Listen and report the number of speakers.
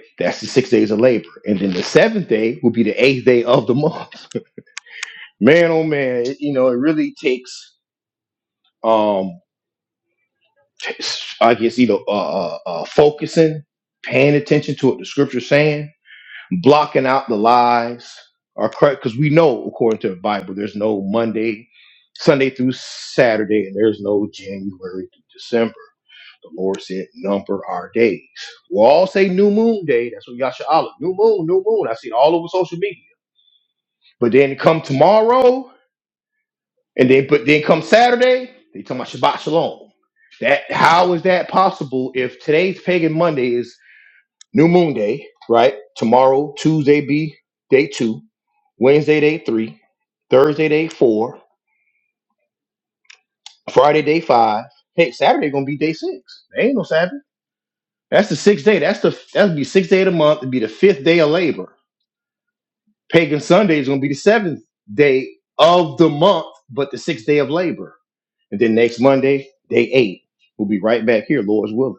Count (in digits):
1